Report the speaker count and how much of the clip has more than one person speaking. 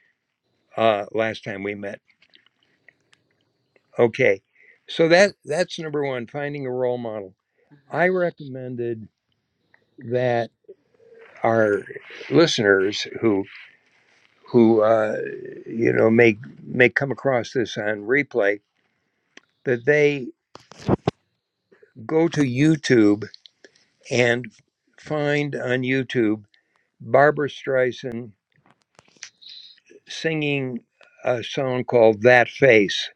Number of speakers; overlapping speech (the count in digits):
1, no overlap